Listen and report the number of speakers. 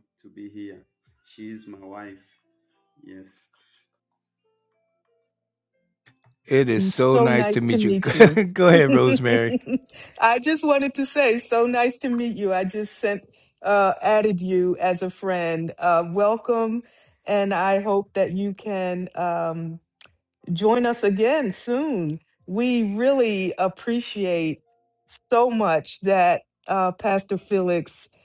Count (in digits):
3